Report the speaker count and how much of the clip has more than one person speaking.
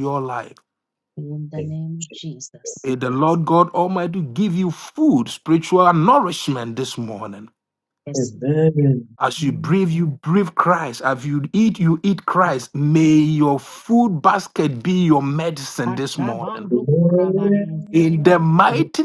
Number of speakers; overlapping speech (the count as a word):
three, about 10%